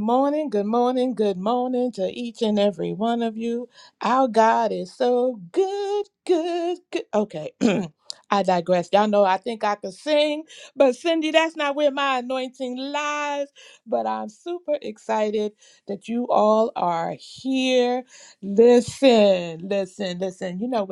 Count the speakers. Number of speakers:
one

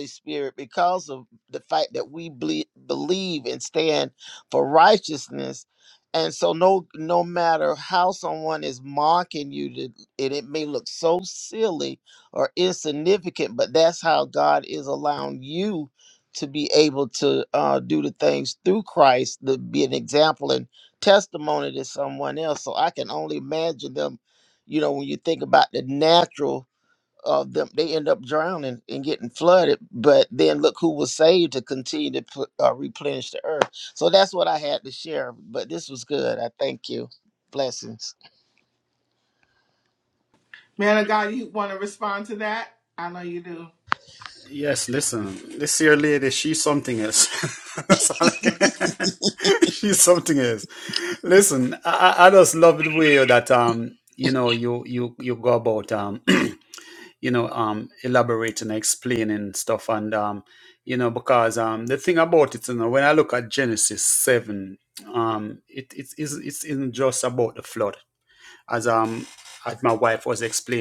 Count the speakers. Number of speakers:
three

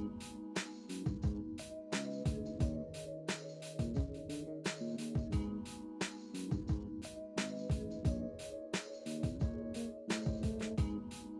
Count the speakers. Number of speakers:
zero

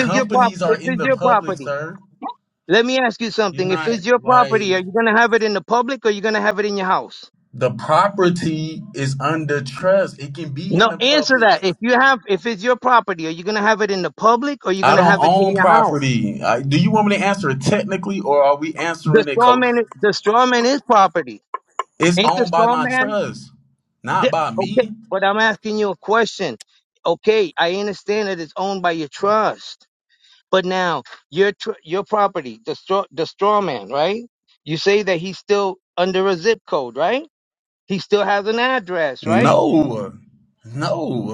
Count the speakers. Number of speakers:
two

